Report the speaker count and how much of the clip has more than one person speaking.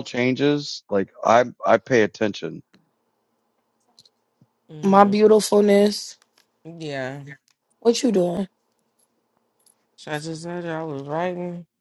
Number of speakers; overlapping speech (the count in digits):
3, about 2%